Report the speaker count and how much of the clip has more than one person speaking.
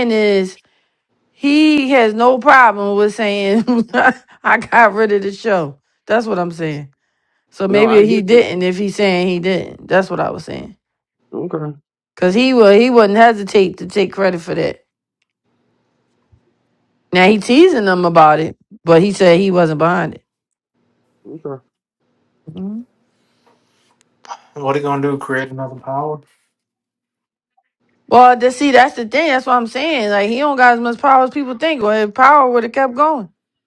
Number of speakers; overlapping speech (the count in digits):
3, about 2%